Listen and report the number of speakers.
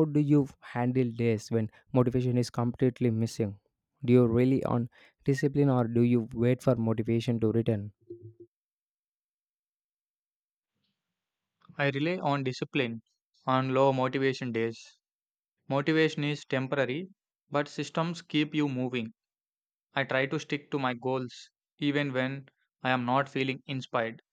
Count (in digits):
2